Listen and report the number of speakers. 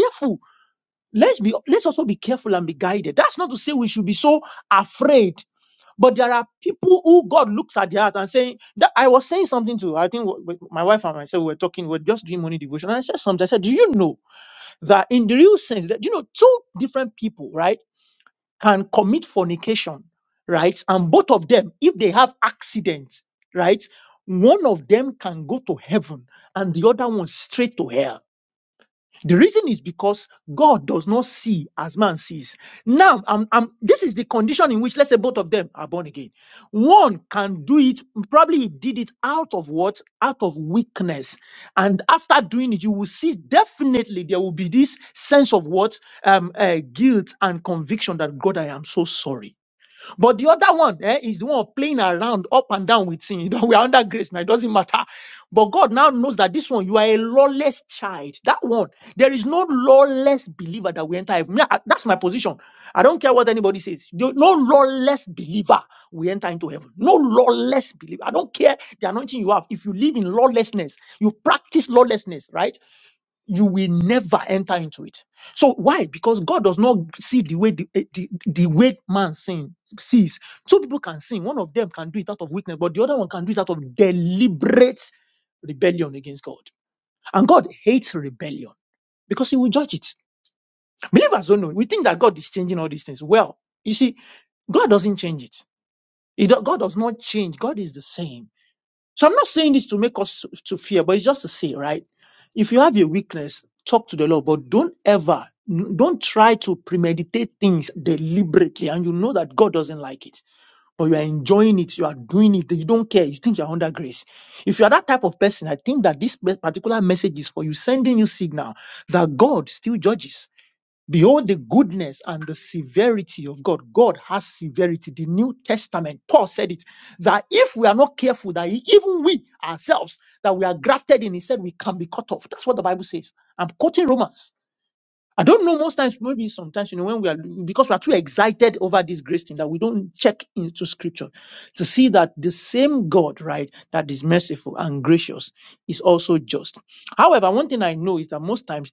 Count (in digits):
1